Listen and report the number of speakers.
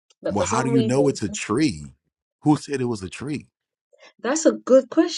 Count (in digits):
2